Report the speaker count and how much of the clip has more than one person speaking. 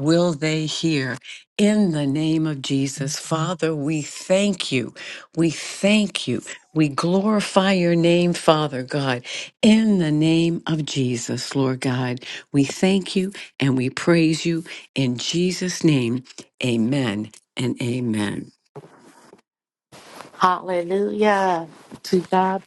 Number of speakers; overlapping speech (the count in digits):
2, no overlap